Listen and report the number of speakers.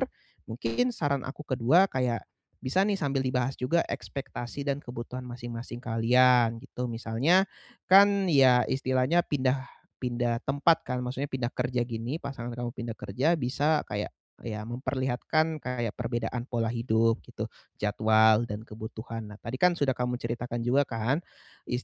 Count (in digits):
1